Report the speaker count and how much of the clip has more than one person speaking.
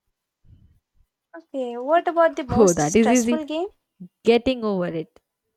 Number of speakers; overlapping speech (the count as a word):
two, about 16%